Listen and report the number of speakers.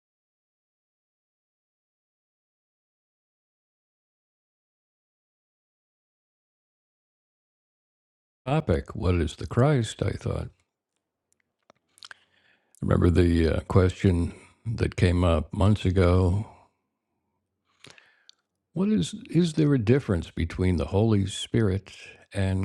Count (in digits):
1